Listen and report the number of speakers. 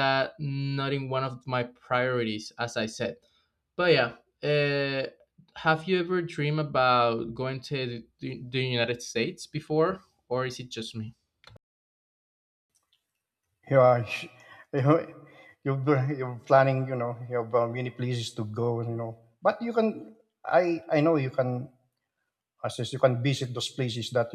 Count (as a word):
two